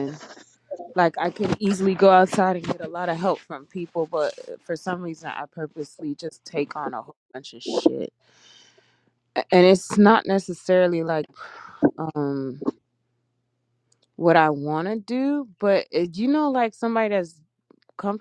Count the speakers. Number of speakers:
1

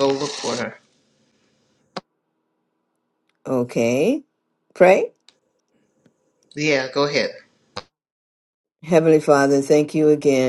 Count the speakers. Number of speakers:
2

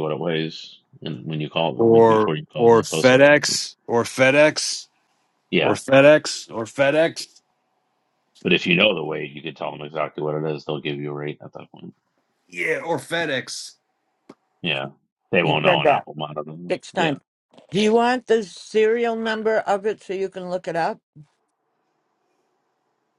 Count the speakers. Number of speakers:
3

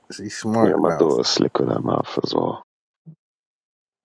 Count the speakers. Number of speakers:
2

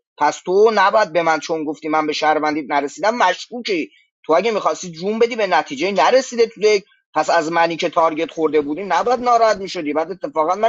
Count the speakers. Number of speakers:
1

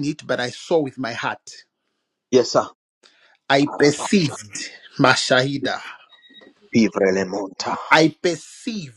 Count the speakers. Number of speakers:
2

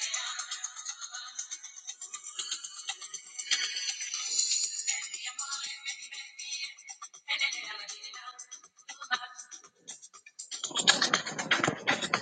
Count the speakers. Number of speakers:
0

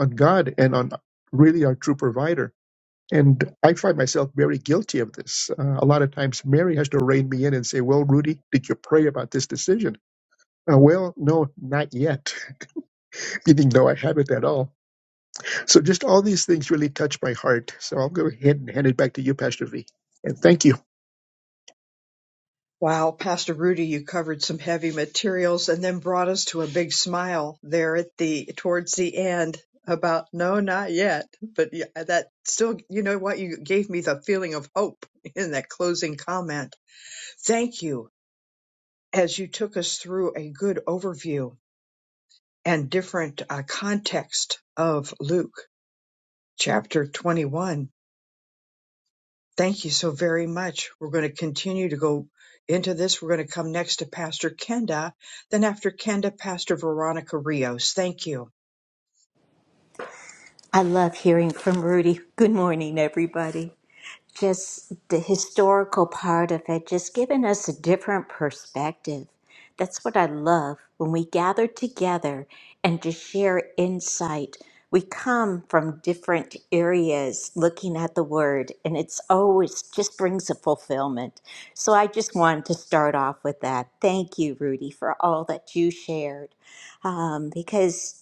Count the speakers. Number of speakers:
3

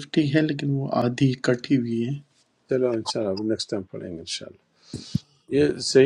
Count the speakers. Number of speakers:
2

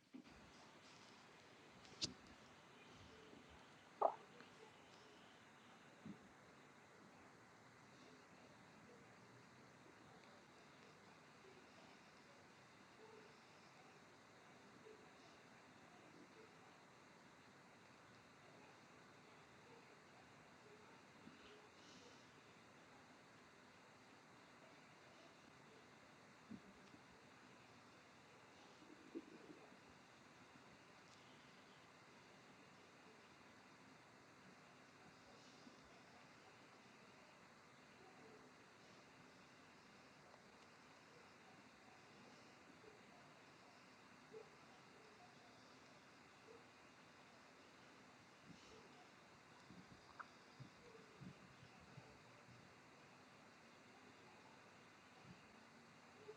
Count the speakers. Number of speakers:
0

